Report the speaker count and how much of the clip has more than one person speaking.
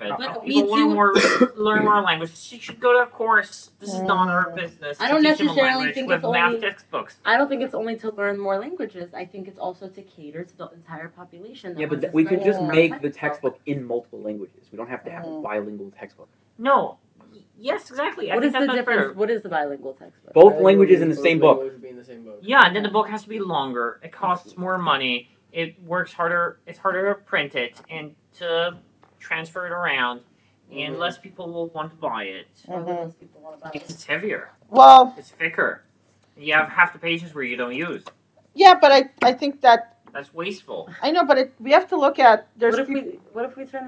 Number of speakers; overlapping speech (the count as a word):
five, about 23%